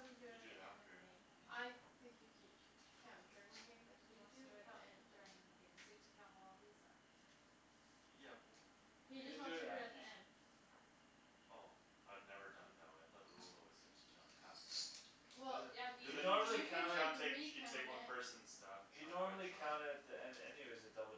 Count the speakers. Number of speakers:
four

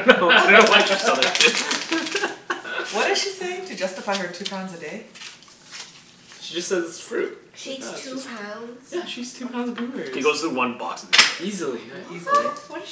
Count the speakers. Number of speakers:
four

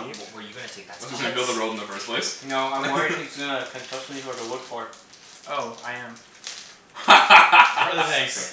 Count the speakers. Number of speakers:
four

